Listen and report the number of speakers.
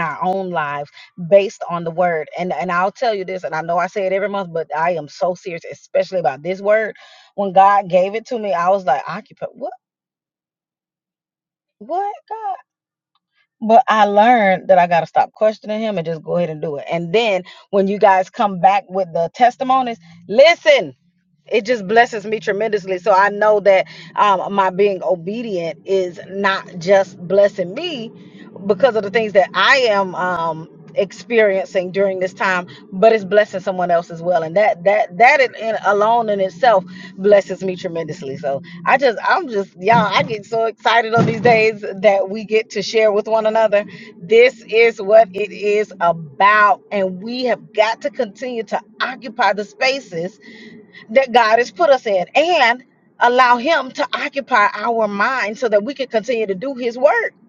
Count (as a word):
one